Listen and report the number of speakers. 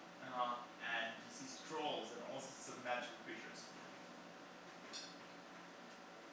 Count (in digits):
1